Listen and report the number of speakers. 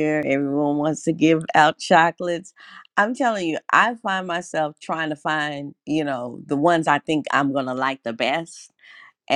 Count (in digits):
1